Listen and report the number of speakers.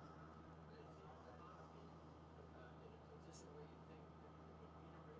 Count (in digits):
0